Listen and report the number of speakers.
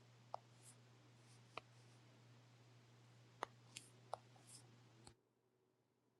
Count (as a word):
zero